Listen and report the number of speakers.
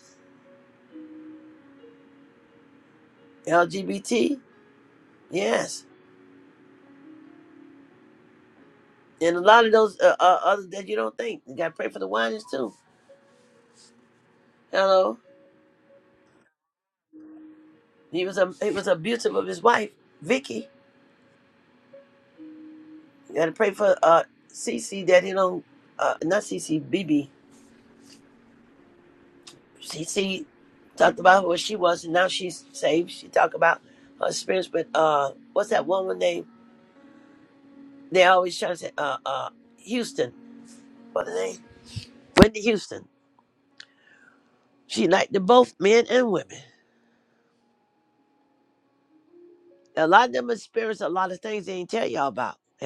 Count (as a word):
one